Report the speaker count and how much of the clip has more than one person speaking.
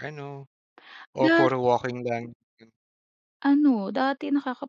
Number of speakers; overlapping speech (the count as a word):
two, about 6%